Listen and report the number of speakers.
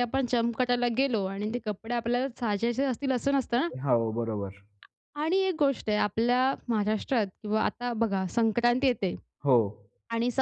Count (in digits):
2